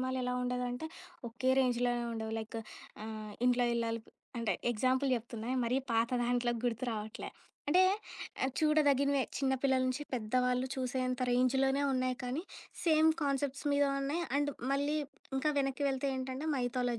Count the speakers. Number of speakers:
one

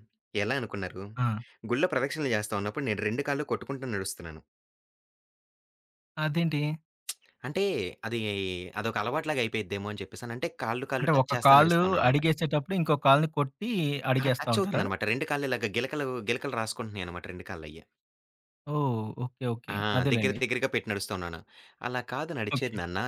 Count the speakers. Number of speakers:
two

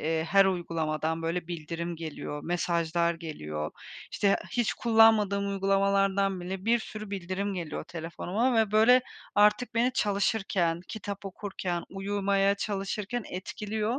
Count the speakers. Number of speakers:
one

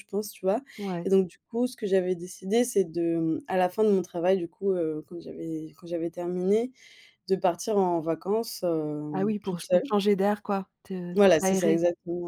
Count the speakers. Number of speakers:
two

